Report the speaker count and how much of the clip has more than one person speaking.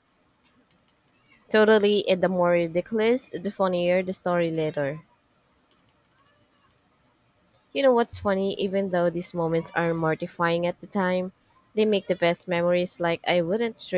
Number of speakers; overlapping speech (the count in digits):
1, no overlap